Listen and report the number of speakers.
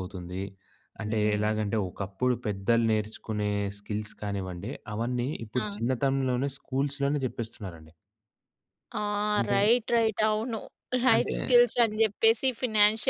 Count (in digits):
2